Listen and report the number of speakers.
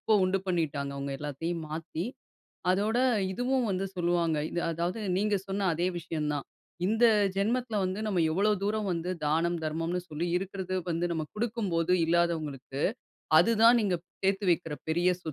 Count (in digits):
1